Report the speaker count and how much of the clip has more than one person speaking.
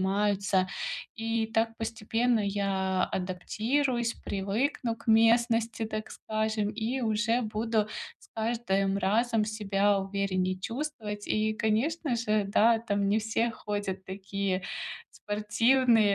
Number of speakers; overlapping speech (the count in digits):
1, no overlap